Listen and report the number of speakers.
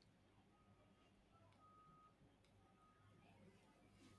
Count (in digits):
0